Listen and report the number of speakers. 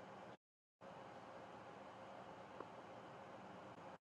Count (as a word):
zero